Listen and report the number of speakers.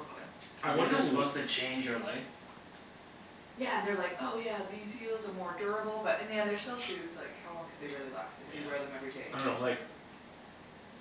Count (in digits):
3